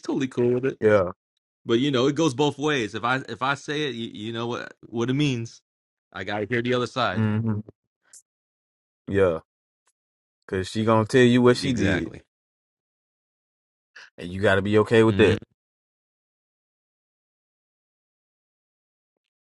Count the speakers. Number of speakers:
2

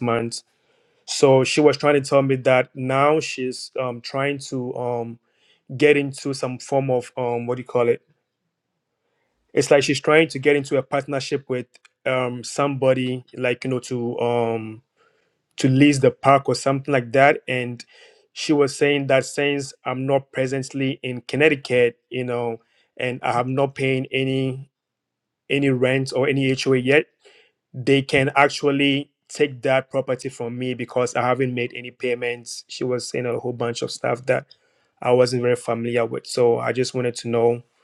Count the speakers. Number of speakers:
1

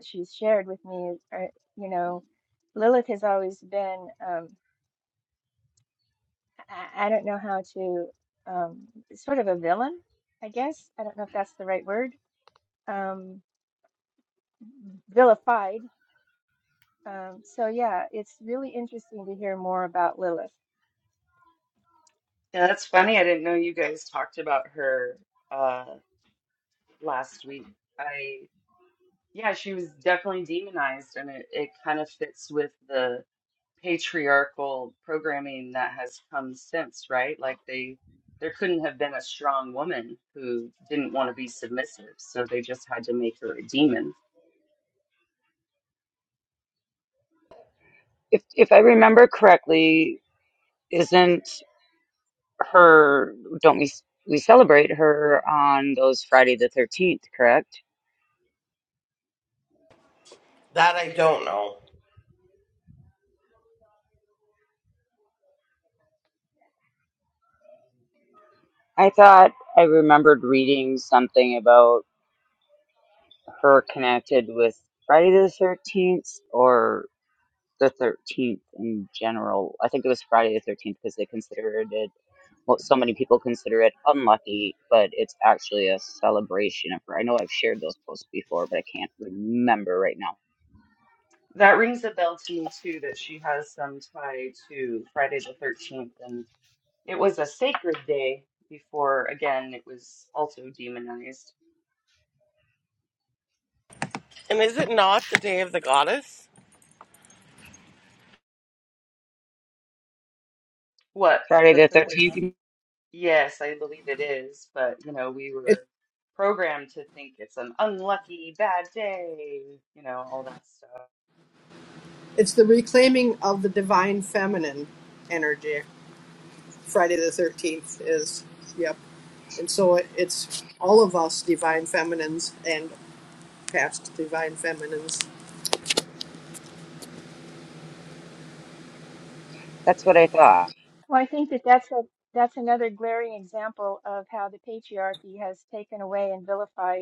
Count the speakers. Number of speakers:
5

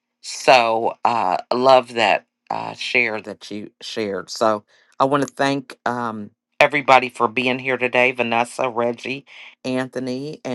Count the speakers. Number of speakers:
1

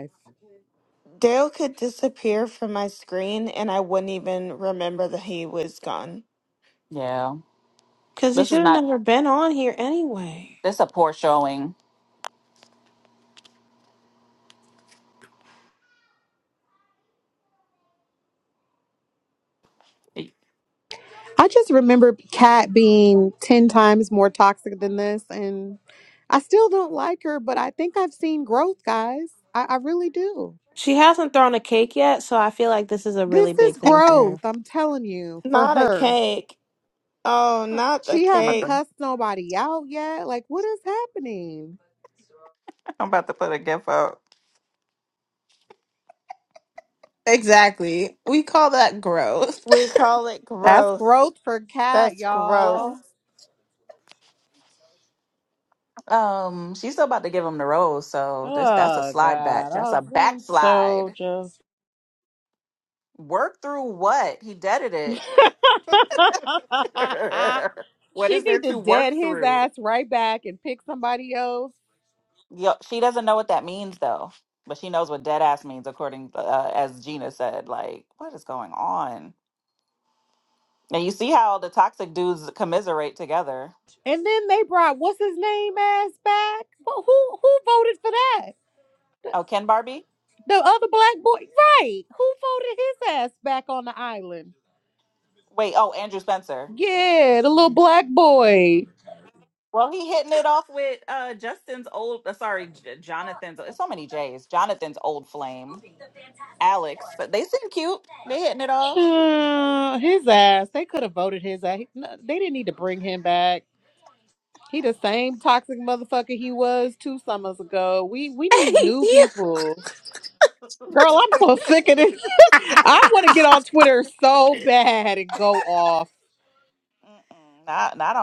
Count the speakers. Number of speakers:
4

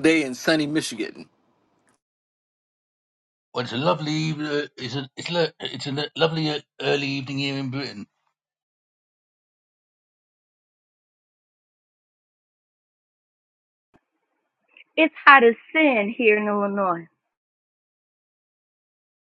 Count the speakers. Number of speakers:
3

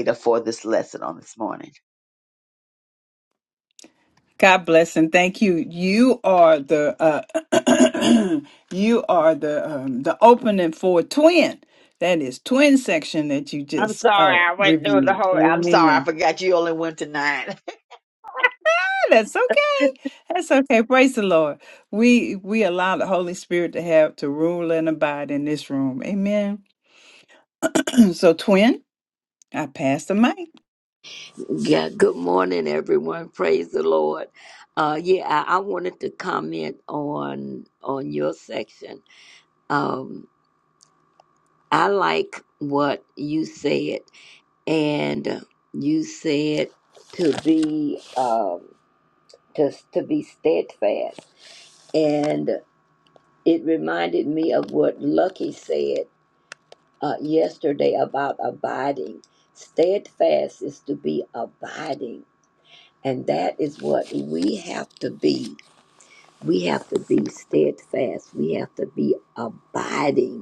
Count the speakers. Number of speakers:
3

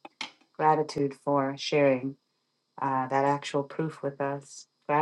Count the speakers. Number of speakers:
1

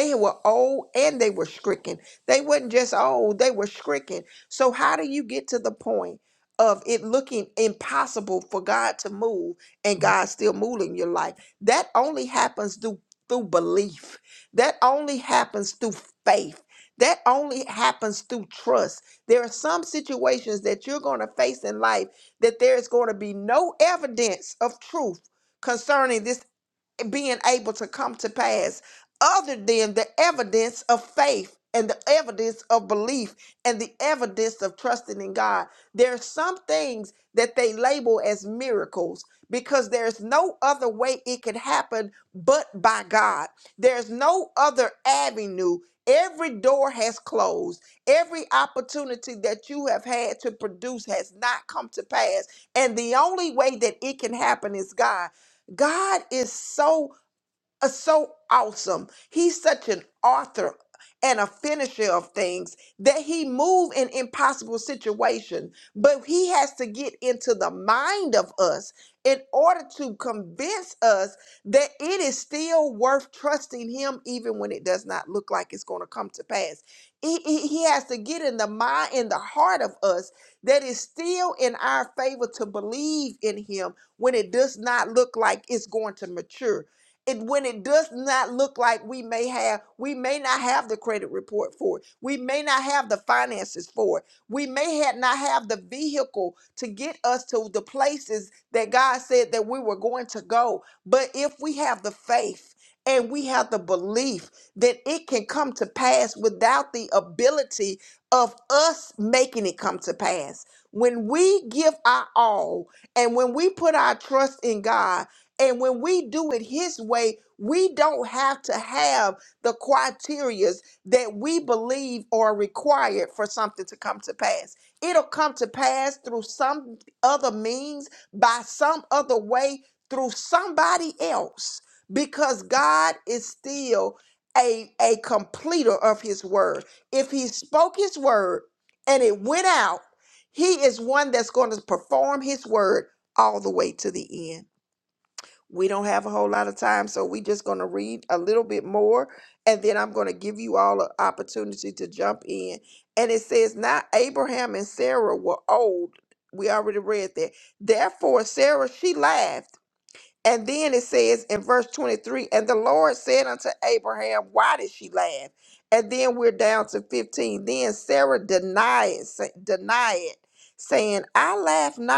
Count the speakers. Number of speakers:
1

